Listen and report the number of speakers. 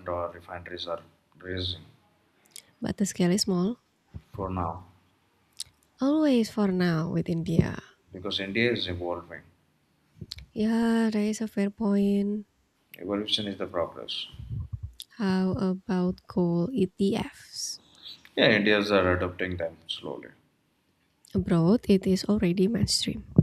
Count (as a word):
two